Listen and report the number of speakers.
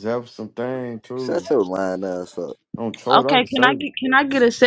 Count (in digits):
3